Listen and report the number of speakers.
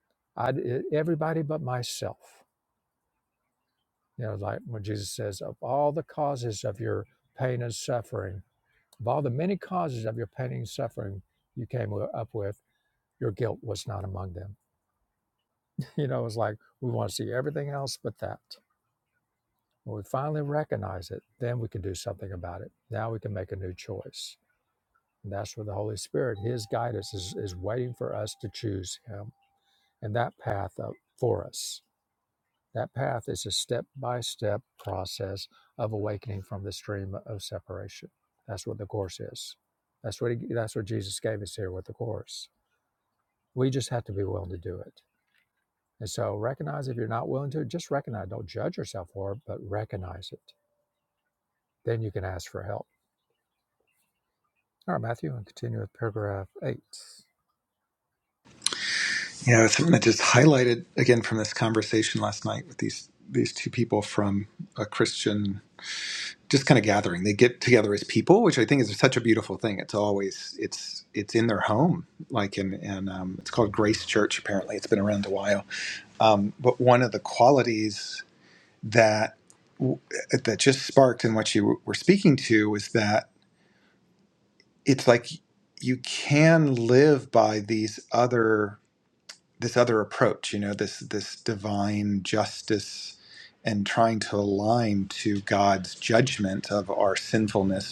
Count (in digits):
2